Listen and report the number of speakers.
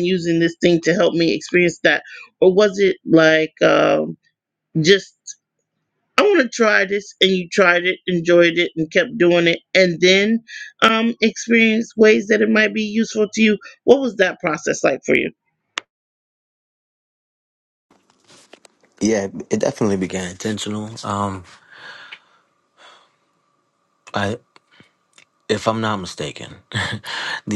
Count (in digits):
2